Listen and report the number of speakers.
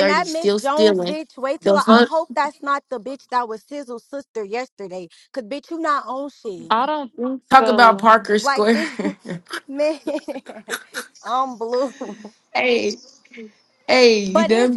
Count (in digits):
3